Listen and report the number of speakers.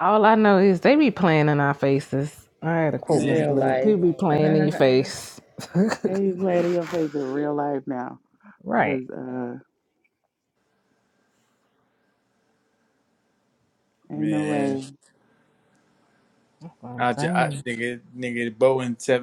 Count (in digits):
3